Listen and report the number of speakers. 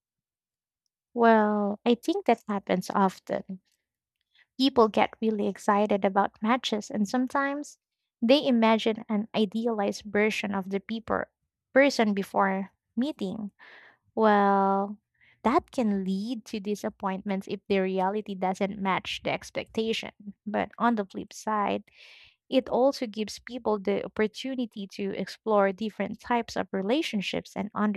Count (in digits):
1